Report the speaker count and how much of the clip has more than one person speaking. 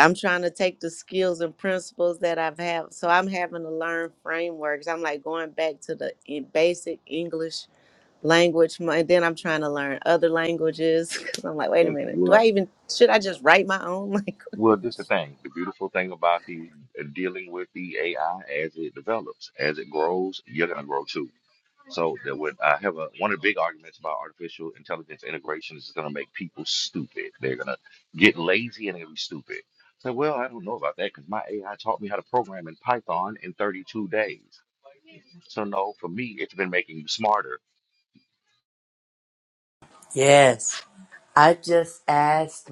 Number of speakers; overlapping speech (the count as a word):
three, about 1%